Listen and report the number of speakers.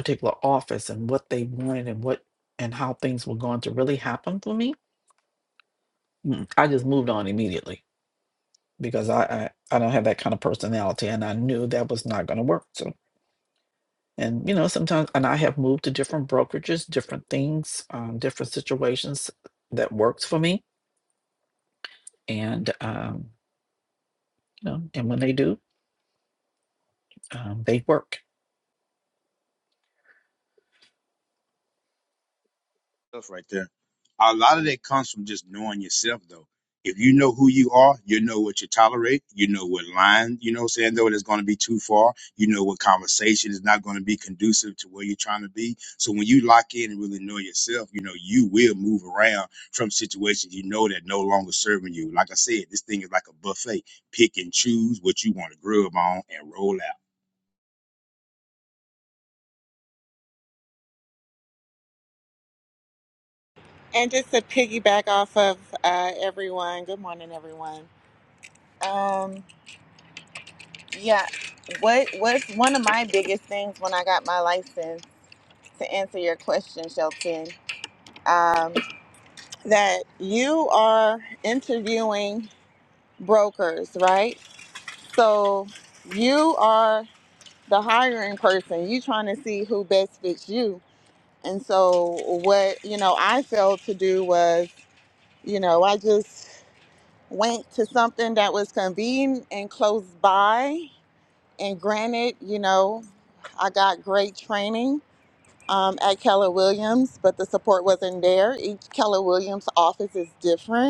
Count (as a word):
three